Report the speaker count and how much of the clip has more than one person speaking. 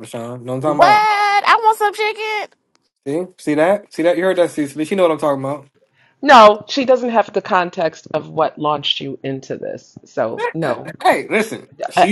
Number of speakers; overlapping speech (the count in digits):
3, about 7%